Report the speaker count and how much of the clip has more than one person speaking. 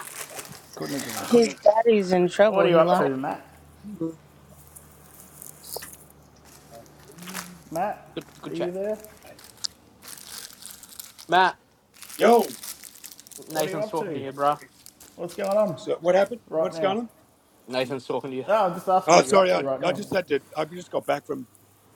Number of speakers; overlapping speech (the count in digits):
4, about 15%